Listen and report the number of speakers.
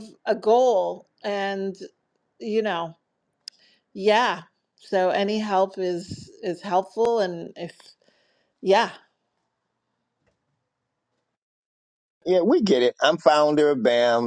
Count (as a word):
two